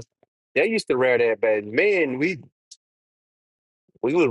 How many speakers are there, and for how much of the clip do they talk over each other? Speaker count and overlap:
1, no overlap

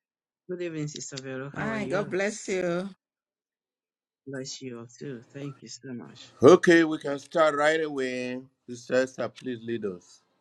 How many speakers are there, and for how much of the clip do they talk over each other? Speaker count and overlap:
3, about 6%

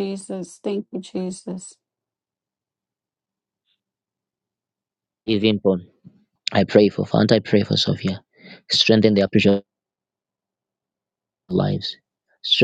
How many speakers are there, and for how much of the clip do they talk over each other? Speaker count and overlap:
2, no overlap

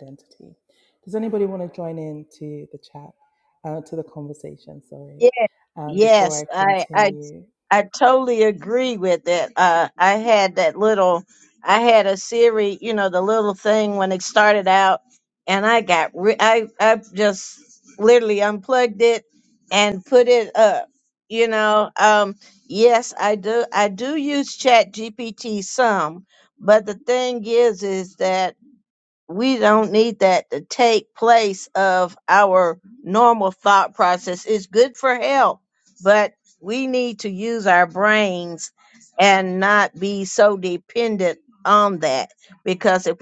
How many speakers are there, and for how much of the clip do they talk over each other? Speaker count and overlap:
2, about 3%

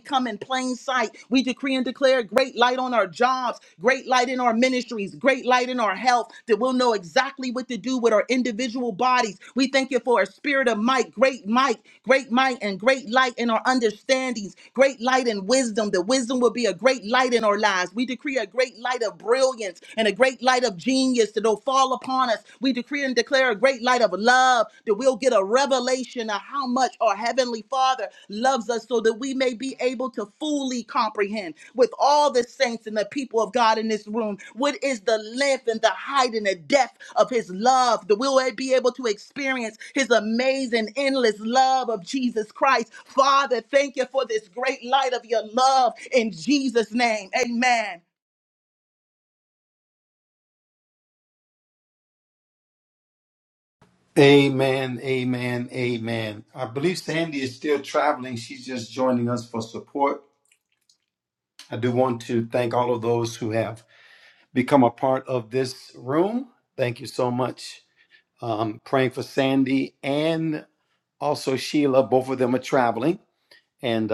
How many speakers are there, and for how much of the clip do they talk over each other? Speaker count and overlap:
2, no overlap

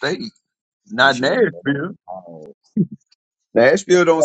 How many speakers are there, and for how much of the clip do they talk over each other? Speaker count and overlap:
2, about 31%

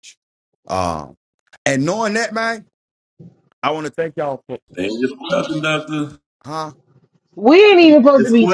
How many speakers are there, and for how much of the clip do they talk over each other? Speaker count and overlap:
3, about 5%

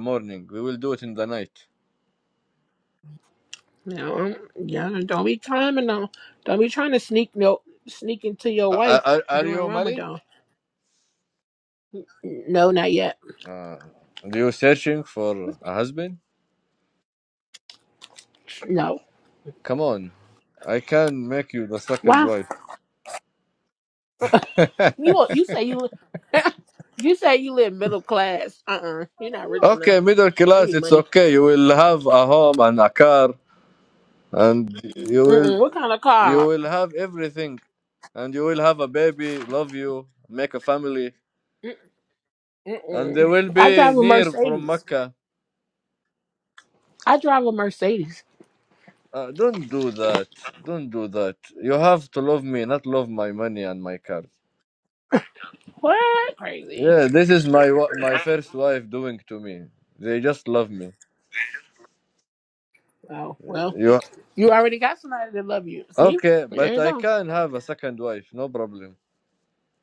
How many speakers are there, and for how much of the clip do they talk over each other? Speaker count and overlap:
2, about 8%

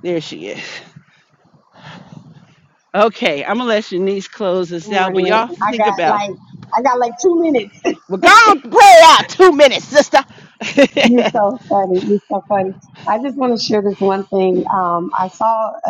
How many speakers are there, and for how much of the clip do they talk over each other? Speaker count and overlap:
2, about 9%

